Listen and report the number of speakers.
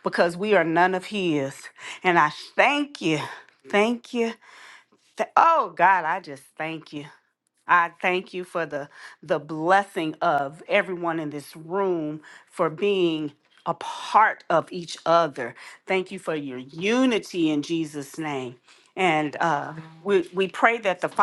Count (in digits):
1